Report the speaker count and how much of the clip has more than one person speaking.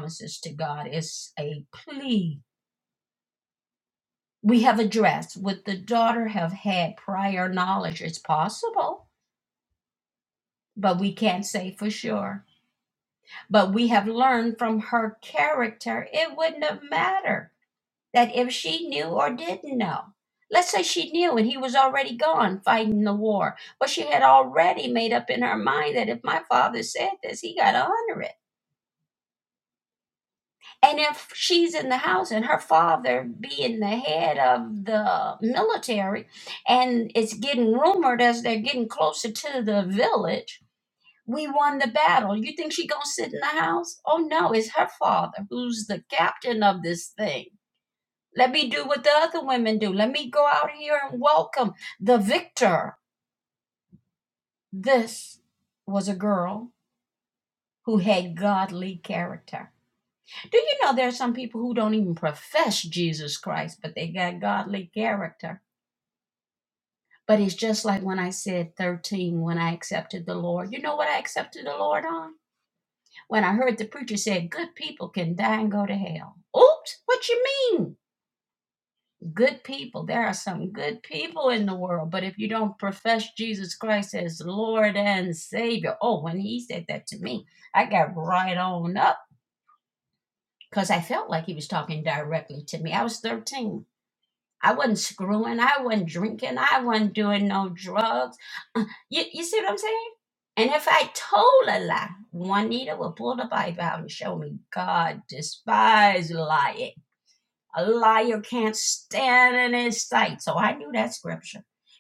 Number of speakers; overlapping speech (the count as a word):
one, no overlap